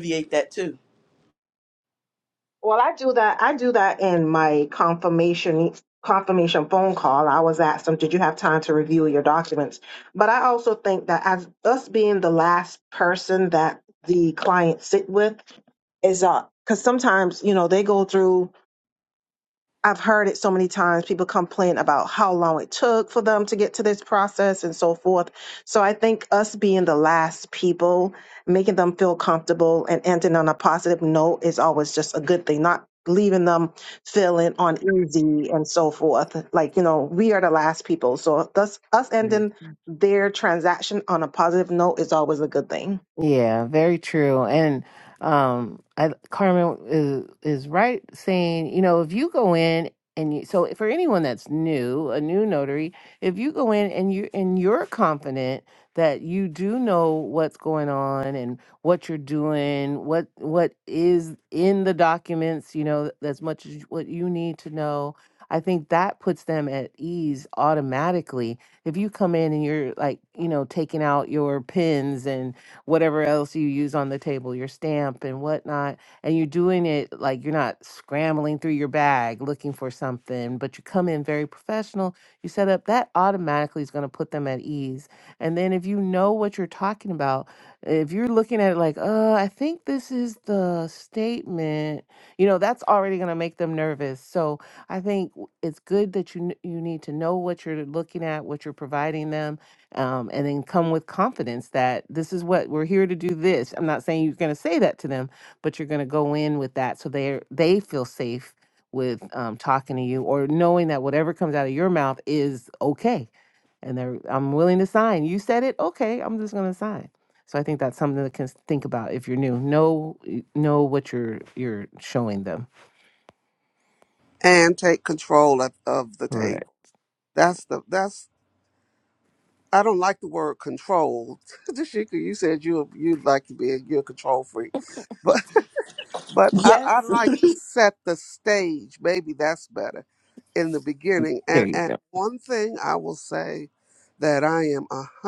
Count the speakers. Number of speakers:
4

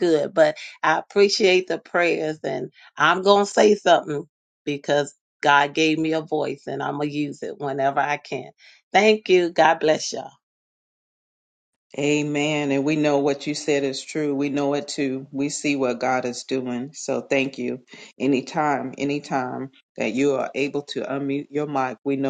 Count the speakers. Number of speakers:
2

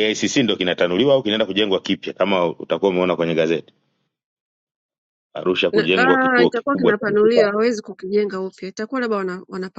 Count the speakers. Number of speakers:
2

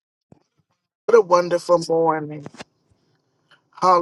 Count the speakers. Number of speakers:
1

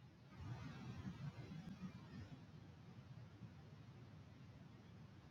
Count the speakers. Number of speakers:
0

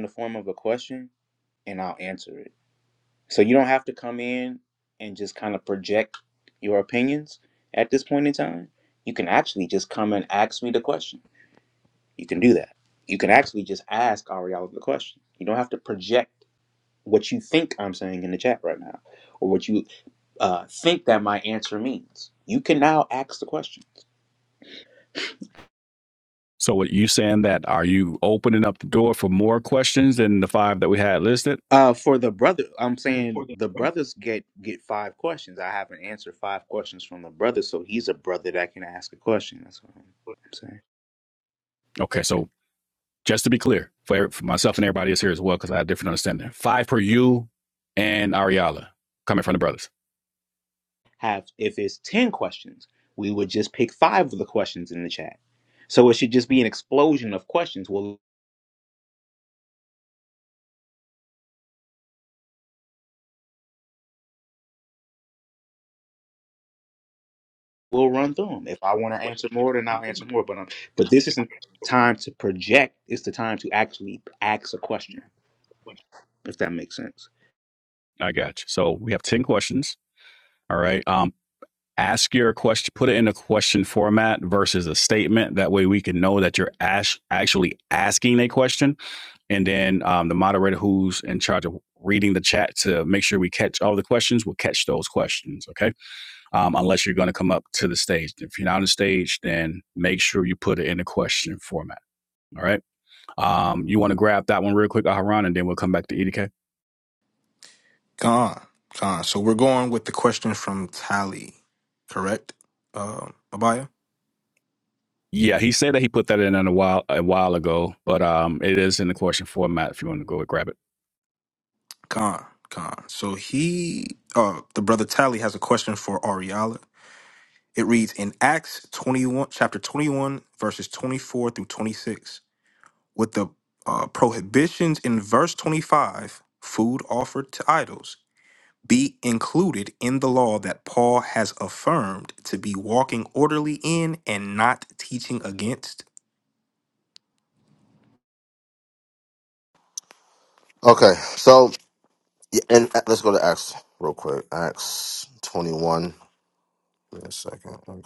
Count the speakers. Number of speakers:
4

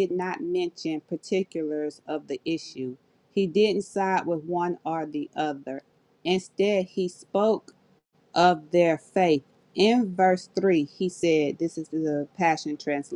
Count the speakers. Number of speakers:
1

